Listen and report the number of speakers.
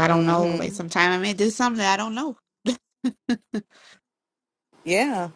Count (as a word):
two